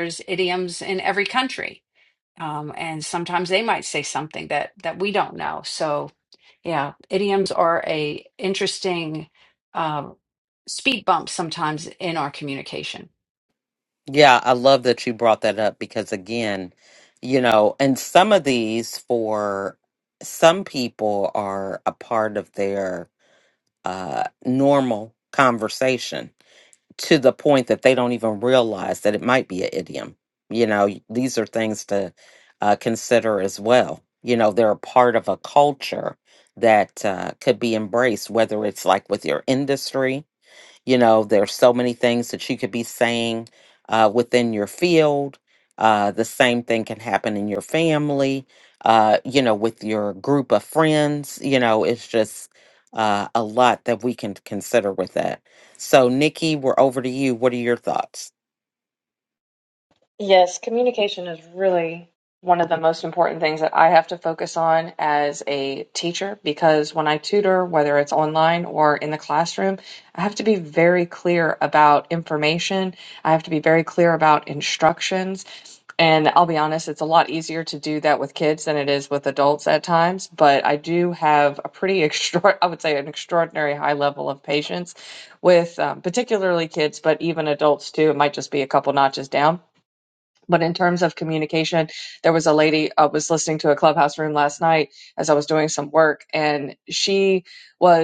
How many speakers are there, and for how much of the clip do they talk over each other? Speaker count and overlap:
three, no overlap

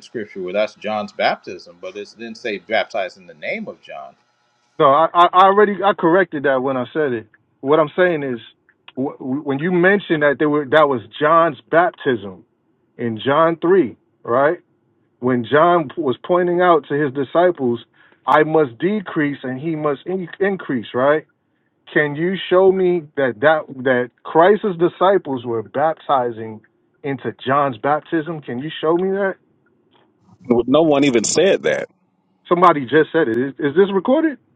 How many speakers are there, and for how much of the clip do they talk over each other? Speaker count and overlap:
three, no overlap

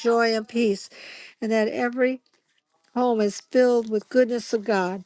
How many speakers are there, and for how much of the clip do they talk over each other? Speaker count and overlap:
one, no overlap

